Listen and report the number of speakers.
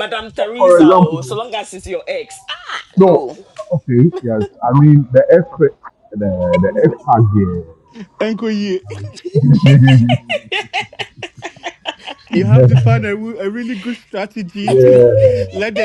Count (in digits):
3